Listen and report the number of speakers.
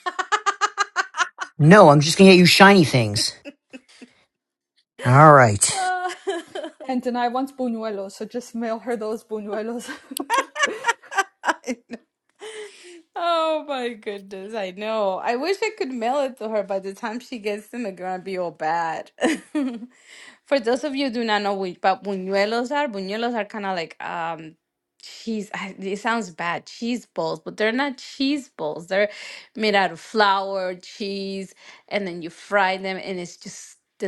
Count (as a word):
three